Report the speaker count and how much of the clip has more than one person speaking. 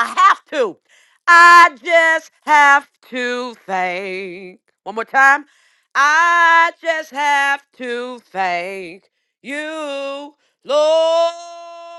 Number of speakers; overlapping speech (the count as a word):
one, no overlap